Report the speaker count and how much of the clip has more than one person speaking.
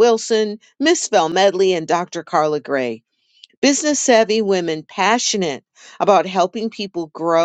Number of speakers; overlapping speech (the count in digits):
1, no overlap